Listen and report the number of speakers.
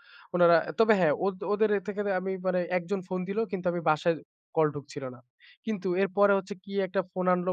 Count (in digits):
1